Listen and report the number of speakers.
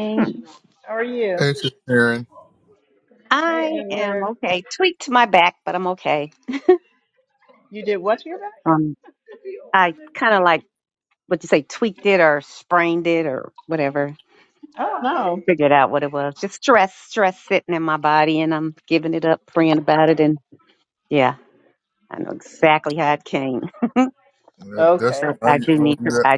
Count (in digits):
3